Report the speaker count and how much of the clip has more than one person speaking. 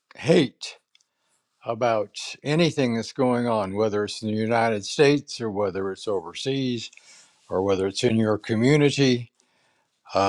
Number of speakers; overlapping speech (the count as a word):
one, no overlap